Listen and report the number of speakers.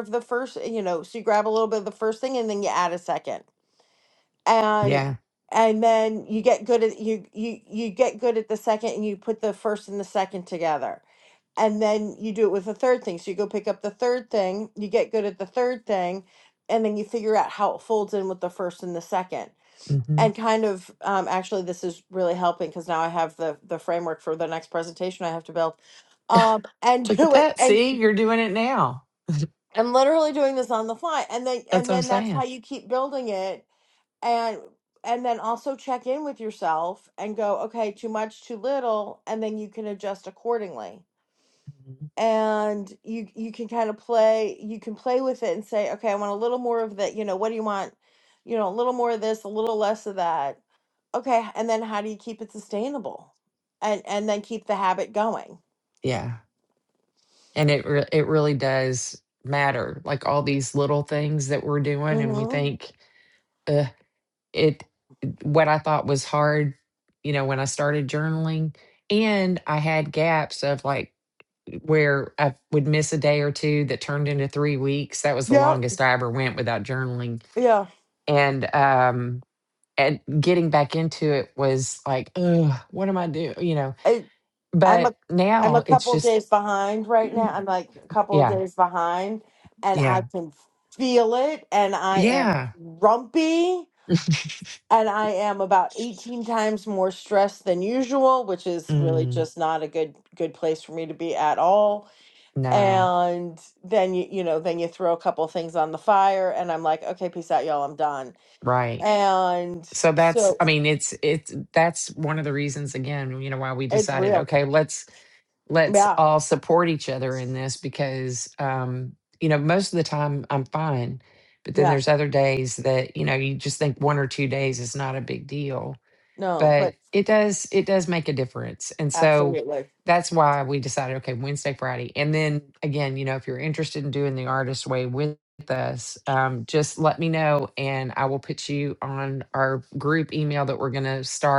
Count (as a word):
two